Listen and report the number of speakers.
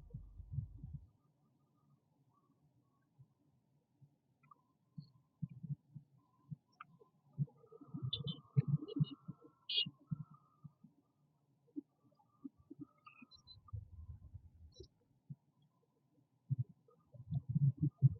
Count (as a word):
zero